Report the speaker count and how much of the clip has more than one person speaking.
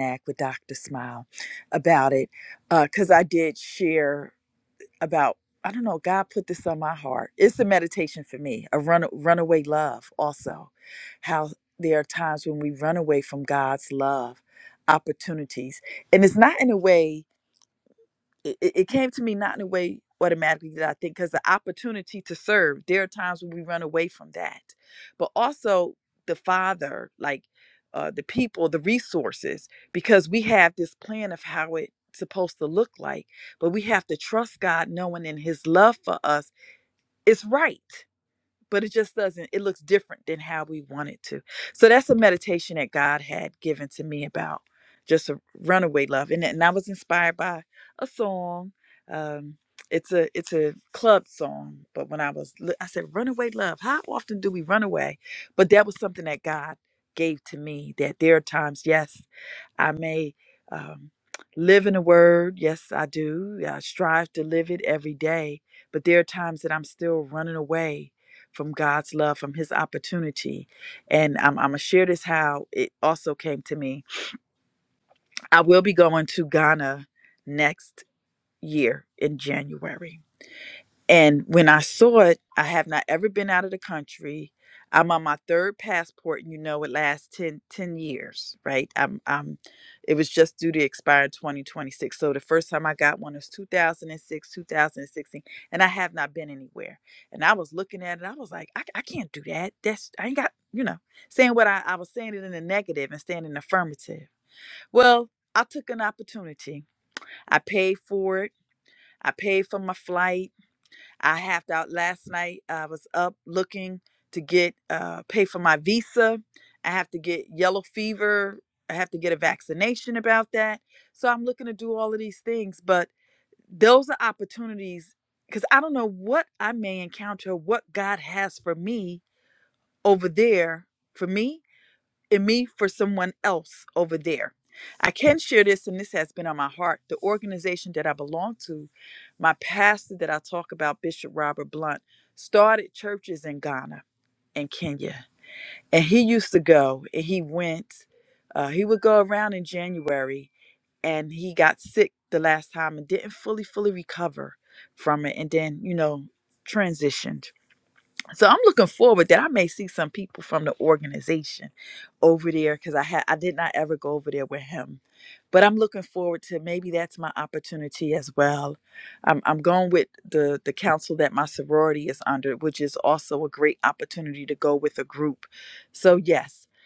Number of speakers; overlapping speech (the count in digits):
1, no overlap